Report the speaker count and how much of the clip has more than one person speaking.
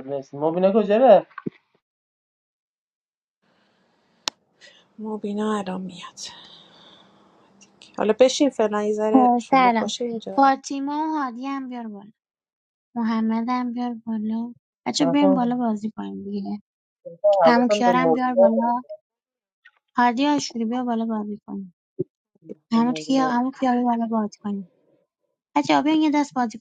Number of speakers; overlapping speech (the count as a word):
three, about 12%